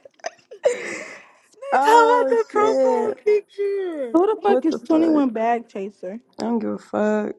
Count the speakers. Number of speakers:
3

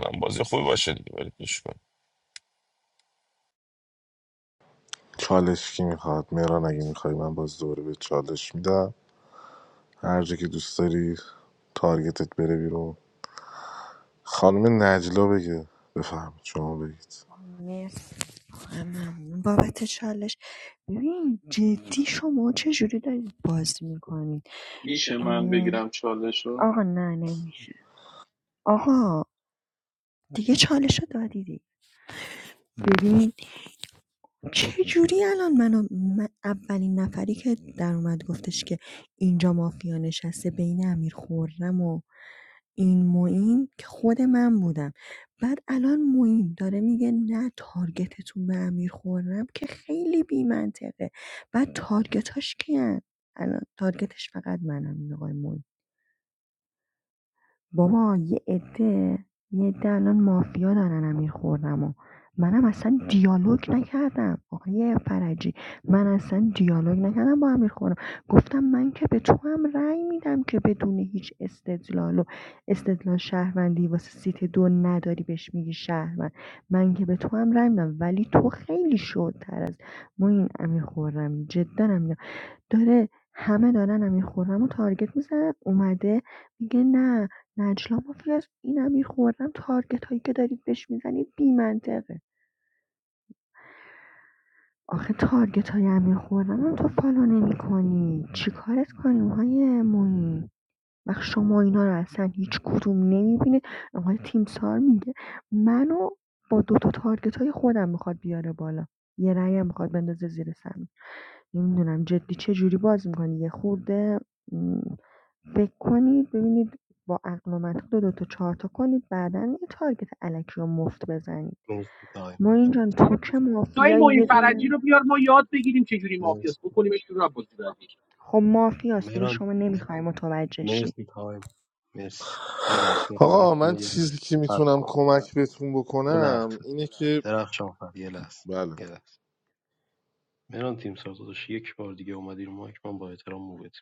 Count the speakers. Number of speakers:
6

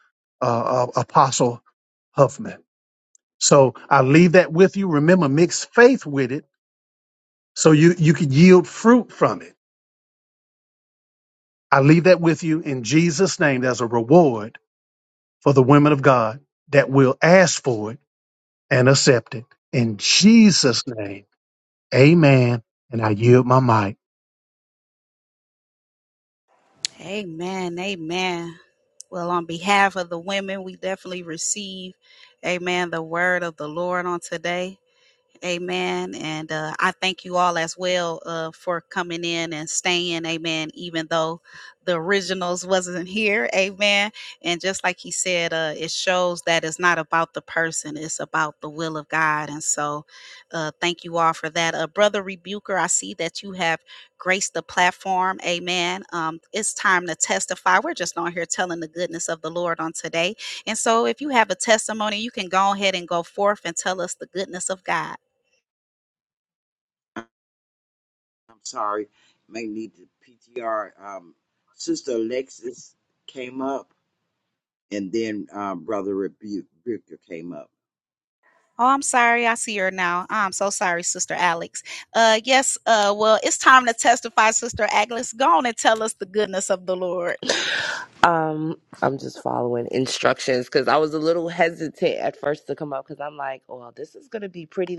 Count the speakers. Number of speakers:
4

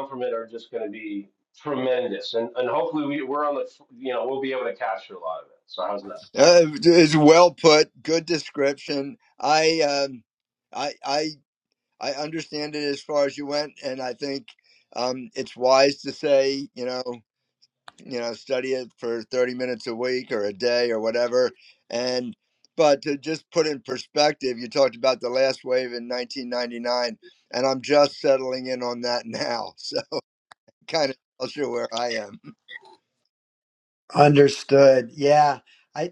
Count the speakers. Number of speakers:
3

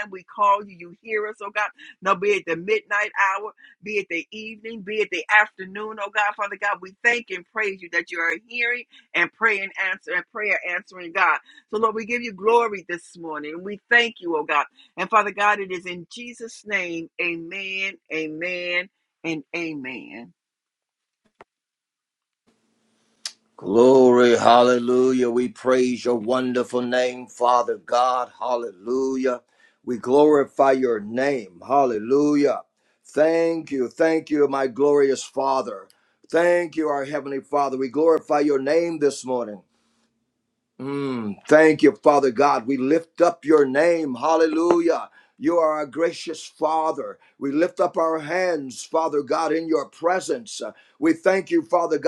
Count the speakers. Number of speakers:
2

